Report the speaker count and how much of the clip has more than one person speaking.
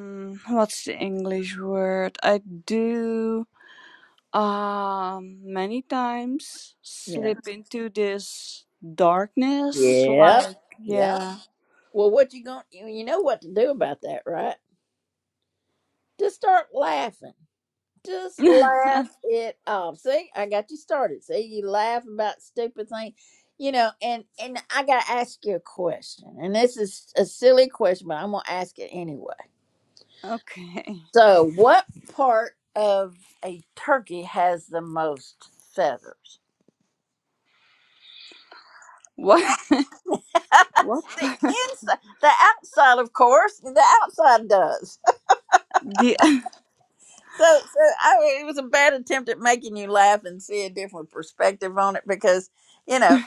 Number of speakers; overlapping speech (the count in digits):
2, about 3%